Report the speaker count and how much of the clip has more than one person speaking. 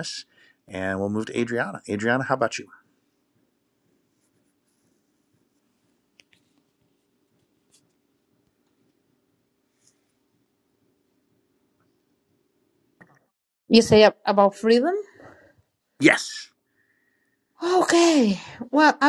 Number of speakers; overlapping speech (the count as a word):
two, no overlap